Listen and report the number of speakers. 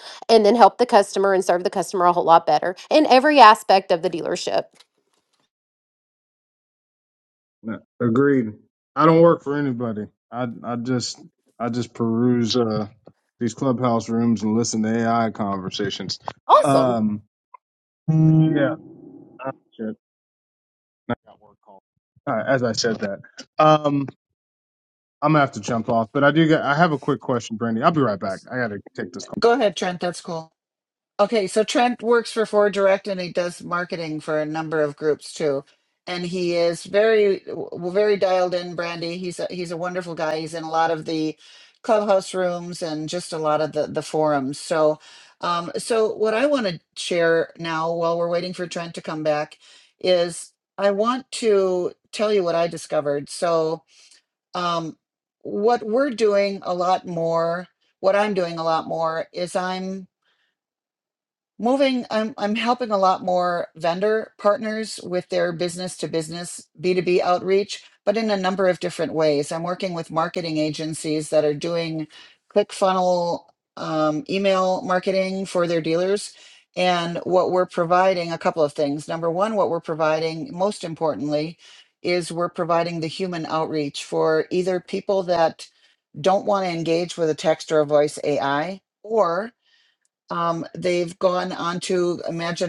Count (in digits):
3